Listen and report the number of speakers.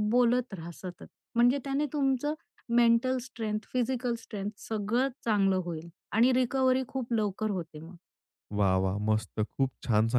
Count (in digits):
2